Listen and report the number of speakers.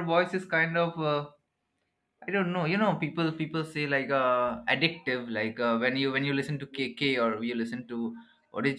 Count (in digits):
1